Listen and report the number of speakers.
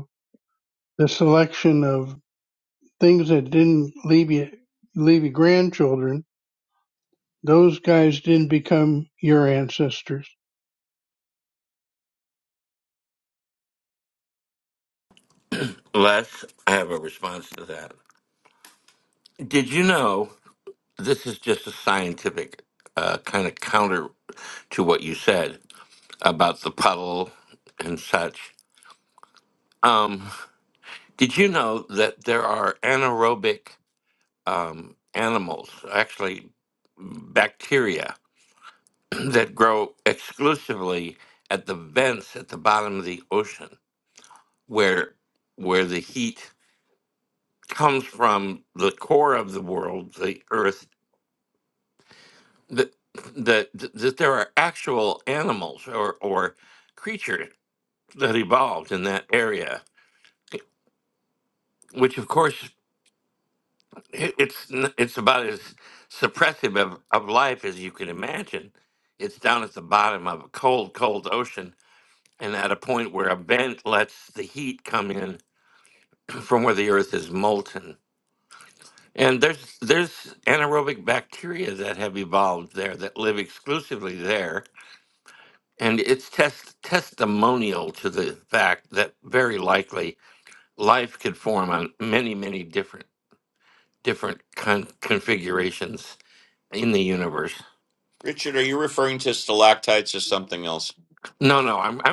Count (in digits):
3